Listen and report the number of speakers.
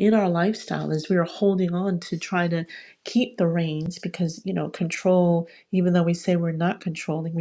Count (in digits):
1